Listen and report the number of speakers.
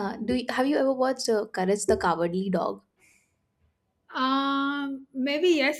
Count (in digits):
2